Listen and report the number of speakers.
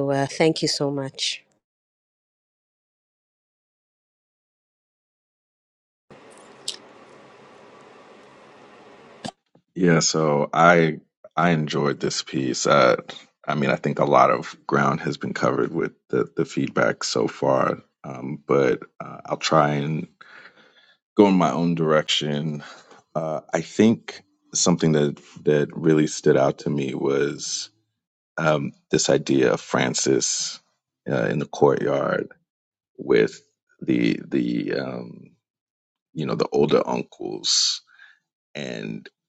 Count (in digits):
2